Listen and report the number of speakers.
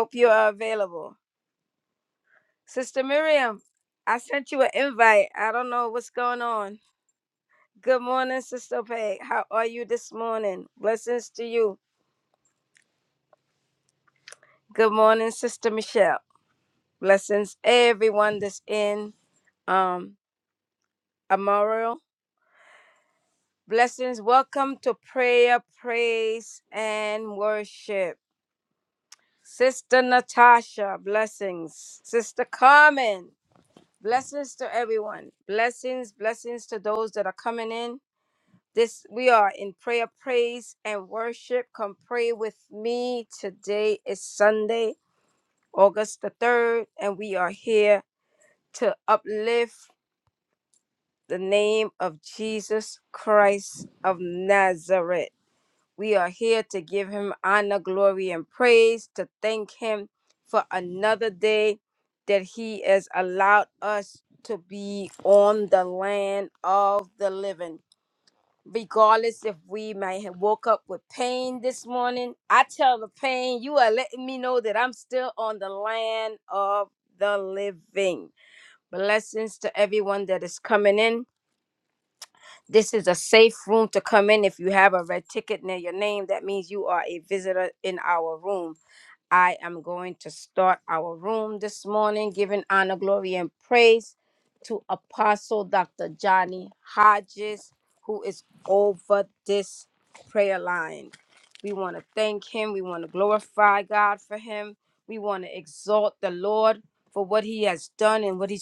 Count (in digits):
1